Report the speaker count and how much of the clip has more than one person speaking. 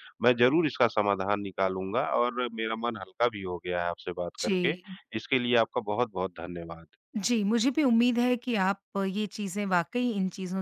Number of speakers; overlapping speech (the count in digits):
2, about 4%